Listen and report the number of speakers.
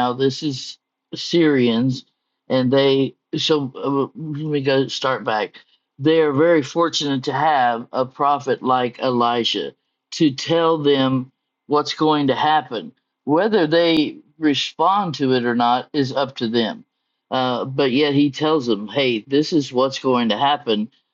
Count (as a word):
one